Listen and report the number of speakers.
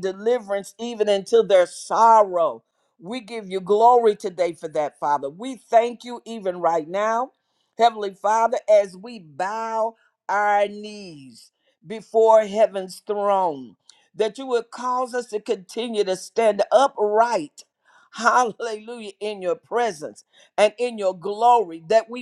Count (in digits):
1